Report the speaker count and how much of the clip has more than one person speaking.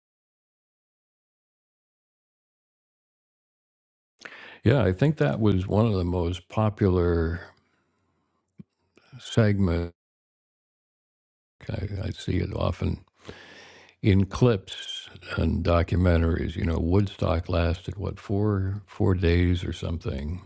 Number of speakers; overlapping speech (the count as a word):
one, no overlap